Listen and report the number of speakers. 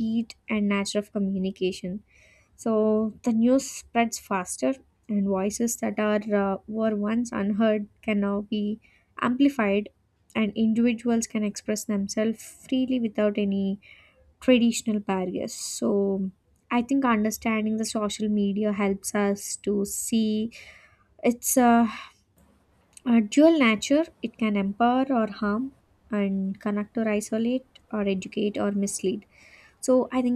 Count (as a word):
one